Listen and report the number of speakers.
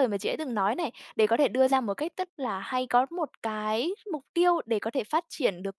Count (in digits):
1